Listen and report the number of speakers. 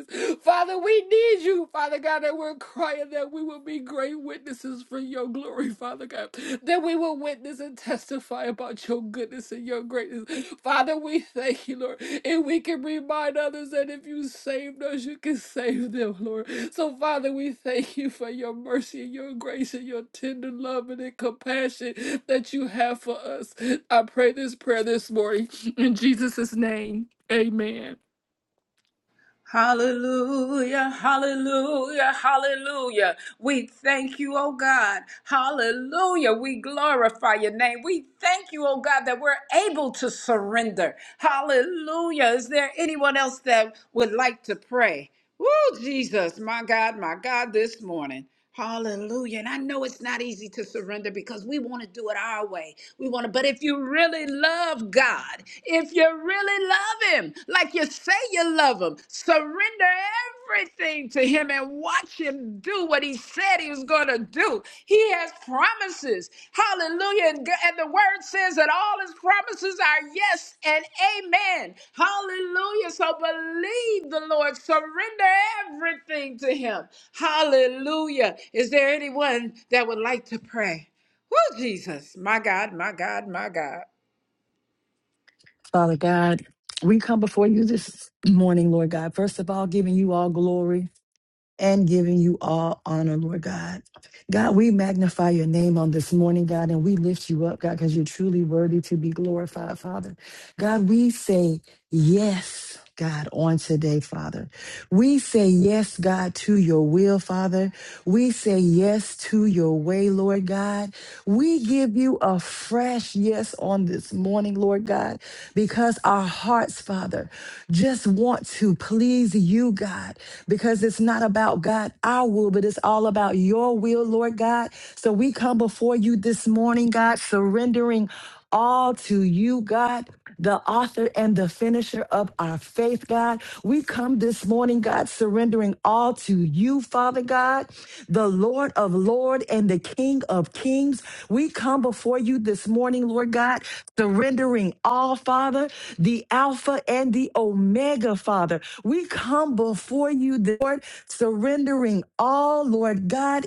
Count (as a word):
three